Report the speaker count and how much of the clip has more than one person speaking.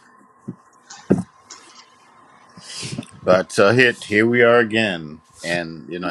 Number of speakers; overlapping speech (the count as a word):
one, no overlap